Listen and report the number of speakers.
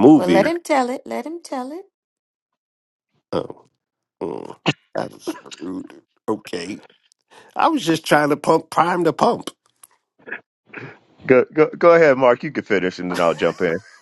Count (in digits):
3